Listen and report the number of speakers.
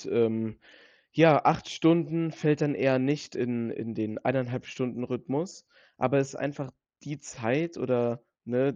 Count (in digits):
1